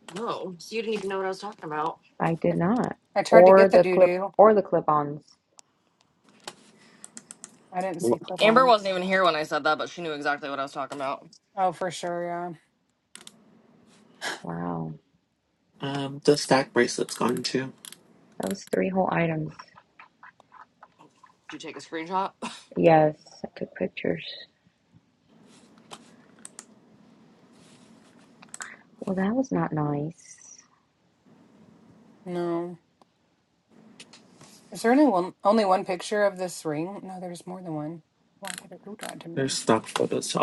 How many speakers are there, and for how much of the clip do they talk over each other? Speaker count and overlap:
four, about 4%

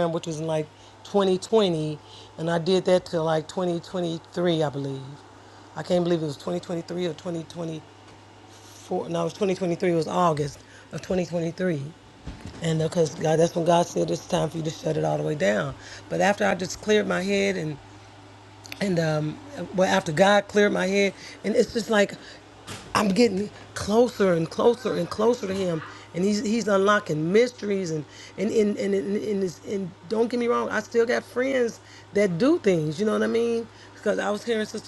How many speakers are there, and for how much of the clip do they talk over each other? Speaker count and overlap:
one, no overlap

